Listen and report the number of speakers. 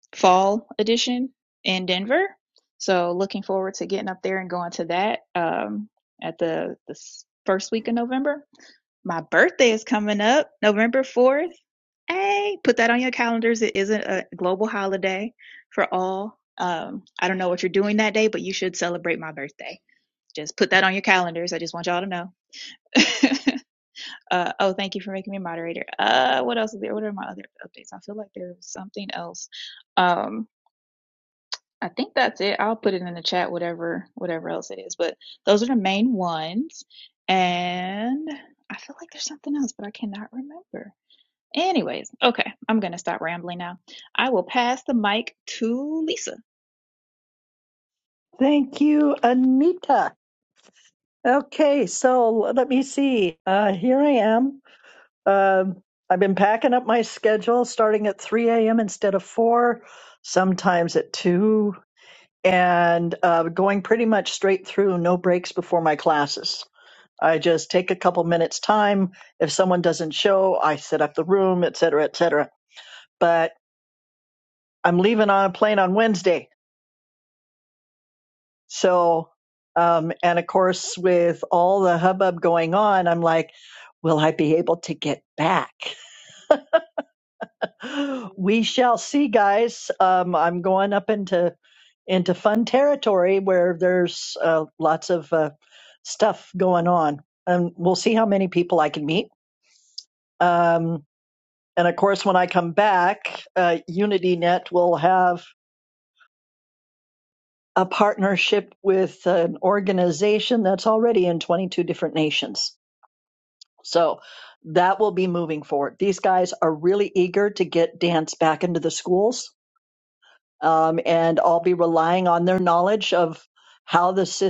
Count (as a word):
two